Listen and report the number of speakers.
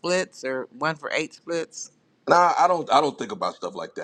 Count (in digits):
2